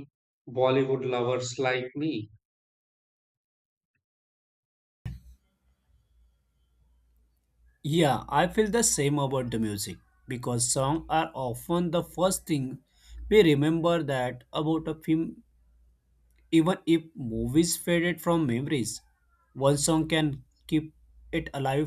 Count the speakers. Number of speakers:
two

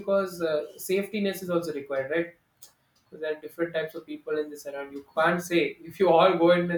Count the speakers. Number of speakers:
one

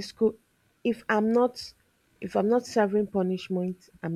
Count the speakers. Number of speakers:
one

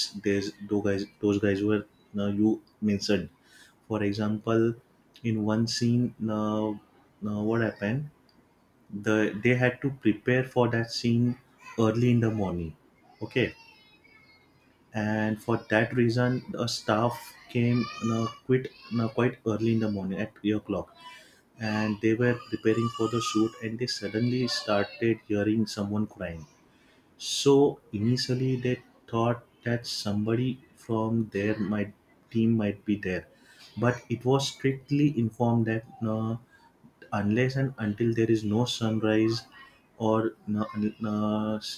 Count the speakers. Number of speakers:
one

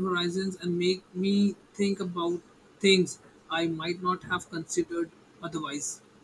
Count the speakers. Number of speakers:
one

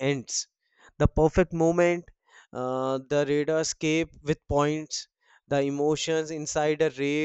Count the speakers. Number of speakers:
one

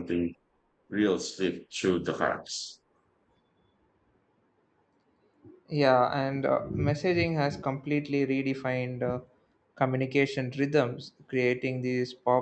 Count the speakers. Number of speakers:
two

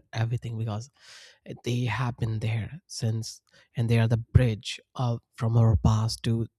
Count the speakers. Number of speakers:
one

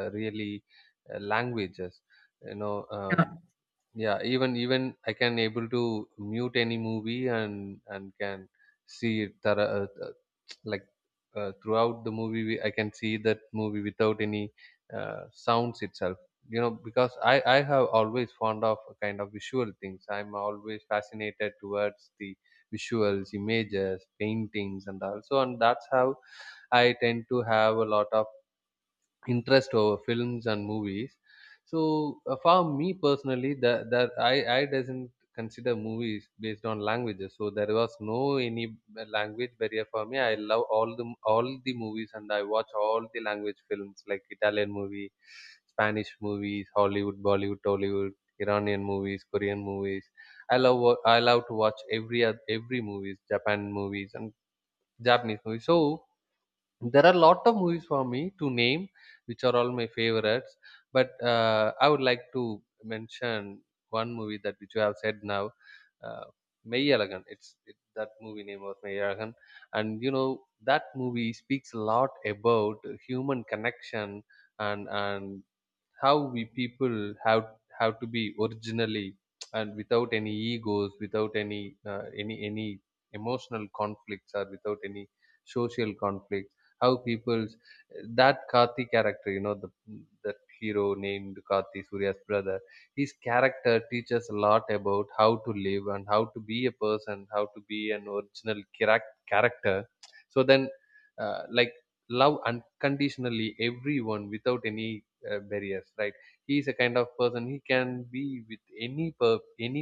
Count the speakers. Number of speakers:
one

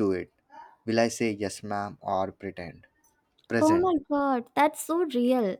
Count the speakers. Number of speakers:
two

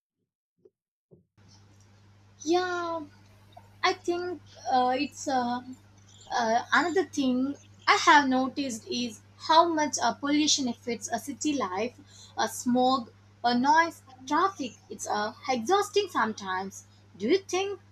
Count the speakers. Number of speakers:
one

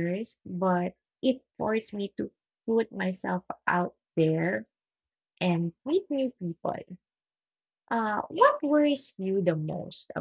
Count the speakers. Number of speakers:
one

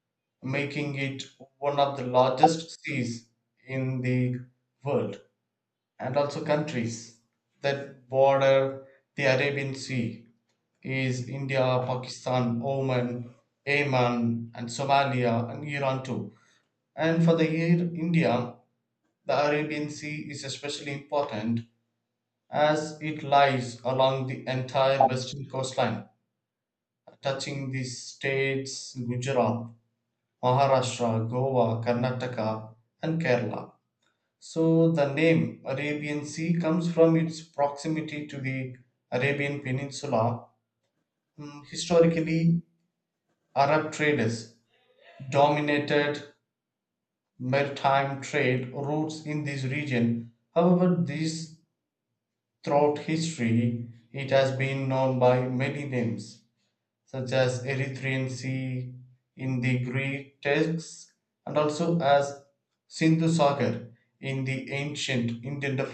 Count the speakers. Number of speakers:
one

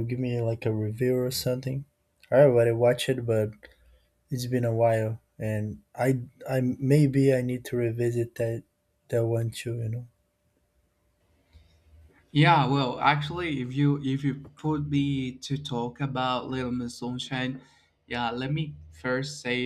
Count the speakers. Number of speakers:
two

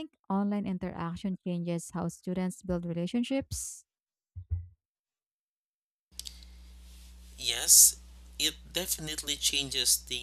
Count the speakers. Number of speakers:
two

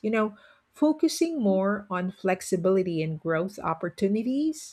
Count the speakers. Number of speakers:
one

